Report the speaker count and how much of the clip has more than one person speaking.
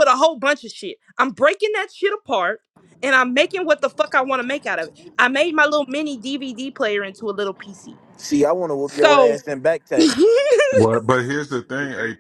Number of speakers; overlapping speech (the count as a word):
three, about 4%